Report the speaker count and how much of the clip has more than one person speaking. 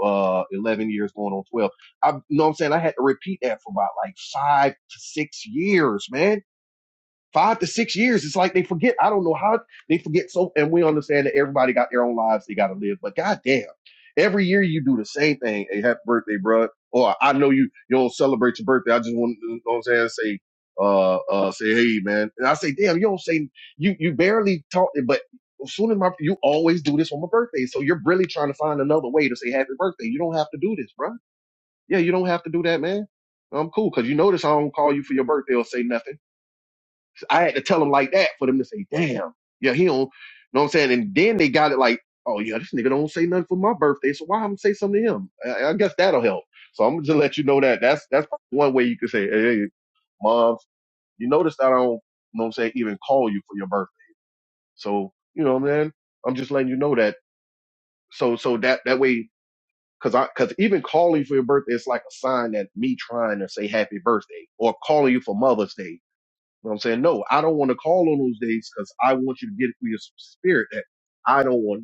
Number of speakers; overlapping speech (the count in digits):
1, no overlap